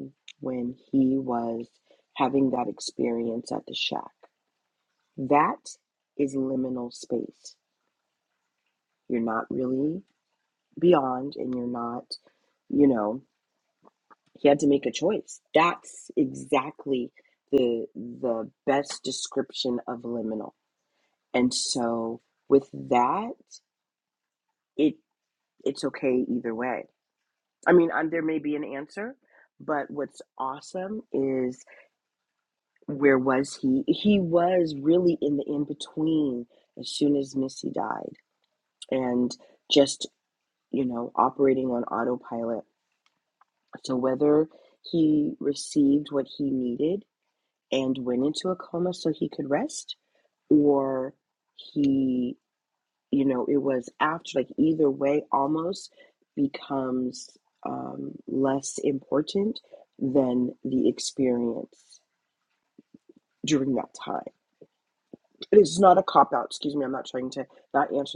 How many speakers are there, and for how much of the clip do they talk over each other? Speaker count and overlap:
1, no overlap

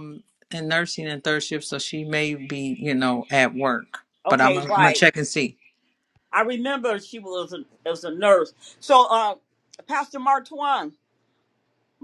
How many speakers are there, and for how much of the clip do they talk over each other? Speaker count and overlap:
2, about 6%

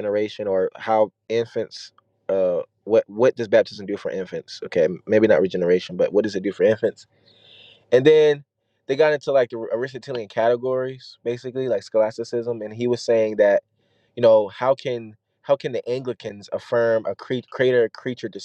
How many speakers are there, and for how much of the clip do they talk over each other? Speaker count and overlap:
1, no overlap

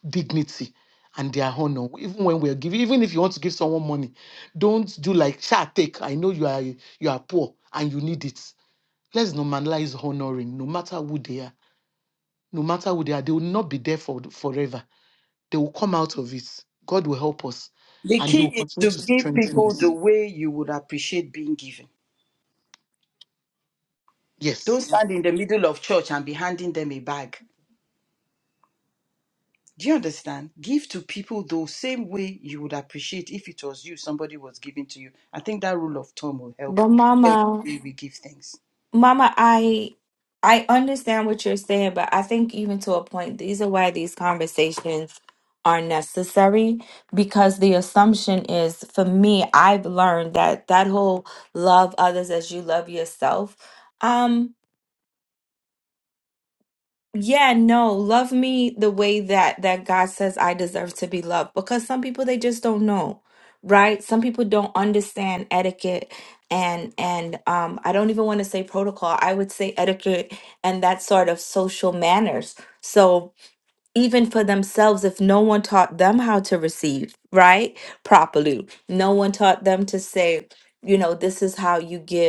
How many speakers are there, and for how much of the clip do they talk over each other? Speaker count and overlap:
3, about 3%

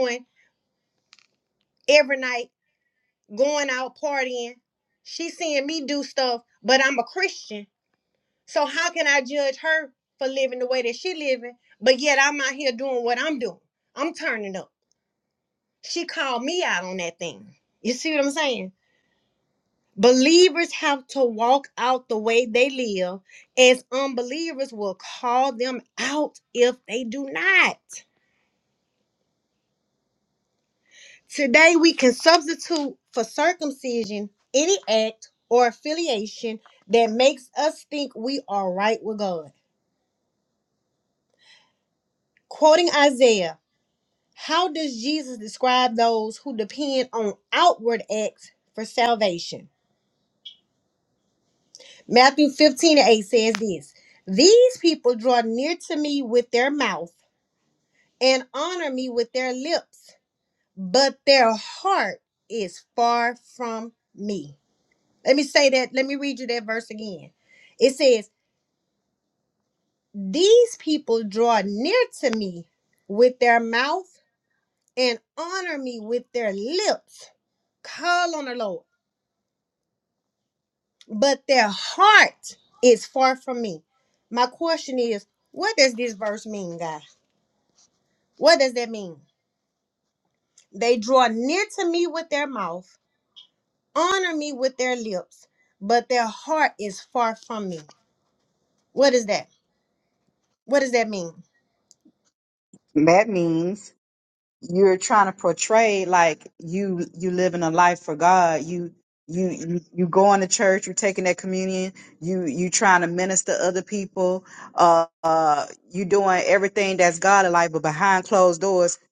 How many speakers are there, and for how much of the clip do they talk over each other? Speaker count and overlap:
2, no overlap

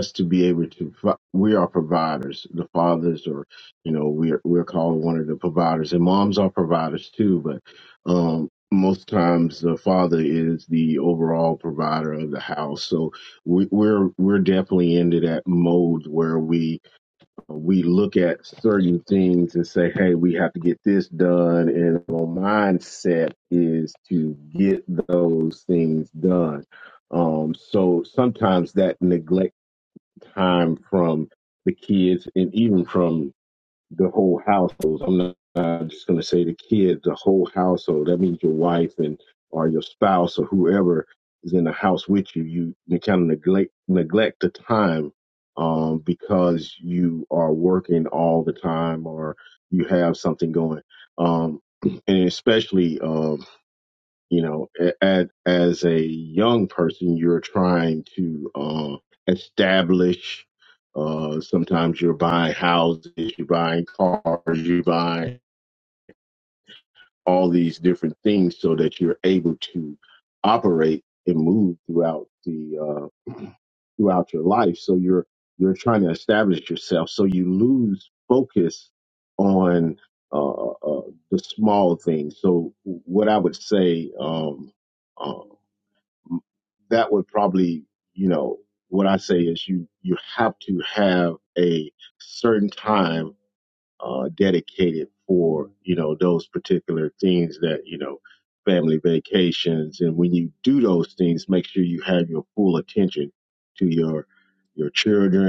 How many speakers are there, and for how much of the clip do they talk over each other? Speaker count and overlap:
1, no overlap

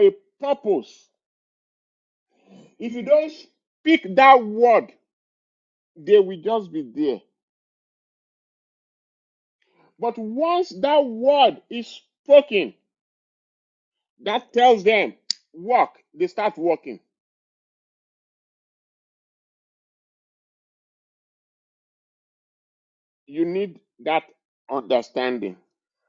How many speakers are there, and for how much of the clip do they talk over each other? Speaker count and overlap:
1, no overlap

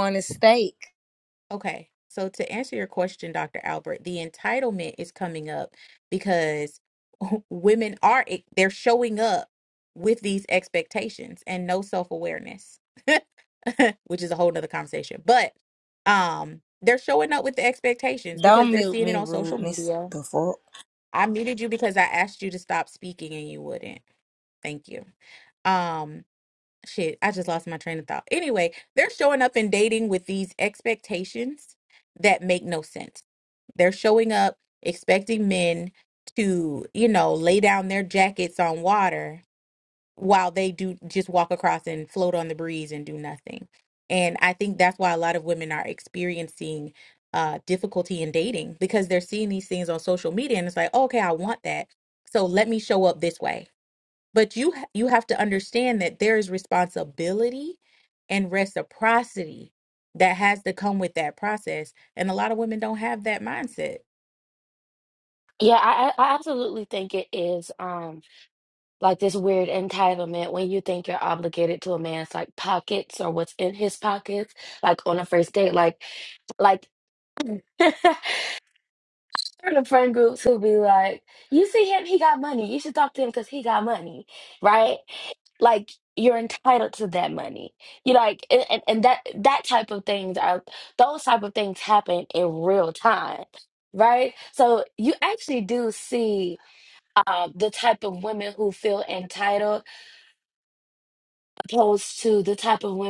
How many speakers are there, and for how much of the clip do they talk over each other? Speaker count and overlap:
3, about 1%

